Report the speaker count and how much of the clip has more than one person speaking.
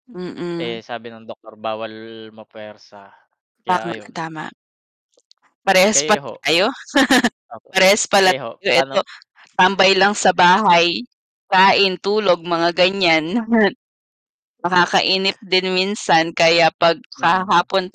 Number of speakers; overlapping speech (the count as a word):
two, about 12%